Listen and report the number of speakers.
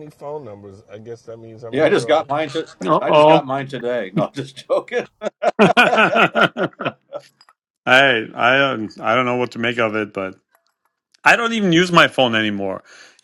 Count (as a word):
three